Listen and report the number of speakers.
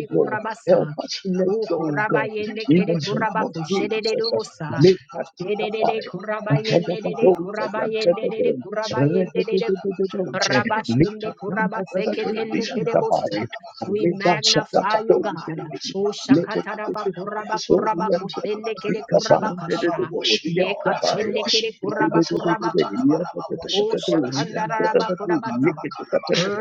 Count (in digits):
3